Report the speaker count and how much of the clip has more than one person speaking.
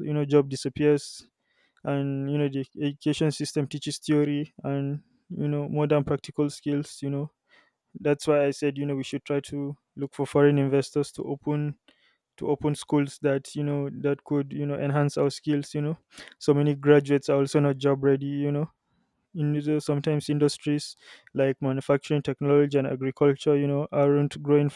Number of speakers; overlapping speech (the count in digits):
1, no overlap